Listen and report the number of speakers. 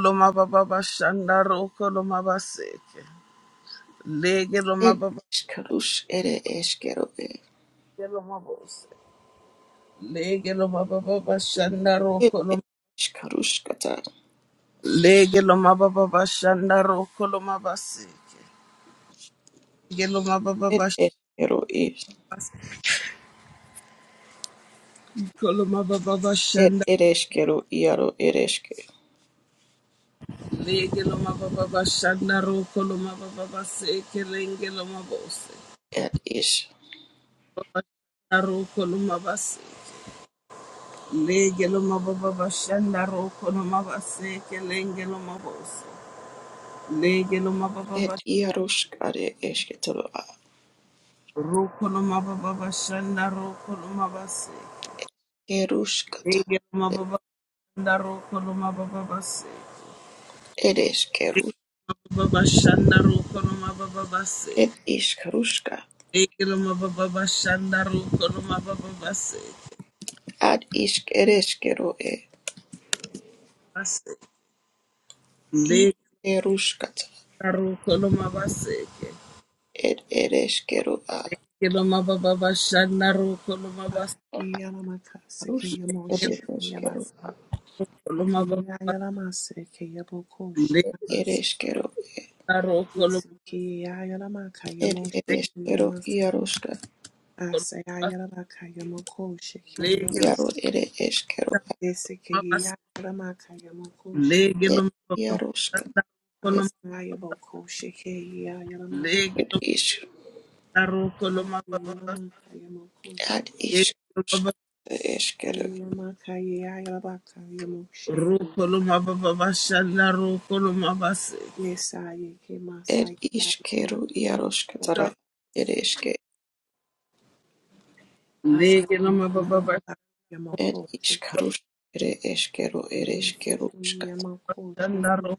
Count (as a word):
three